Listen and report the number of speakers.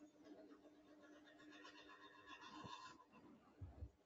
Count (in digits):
0